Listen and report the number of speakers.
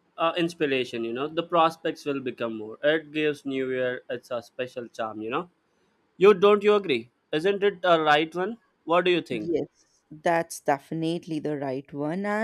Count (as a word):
two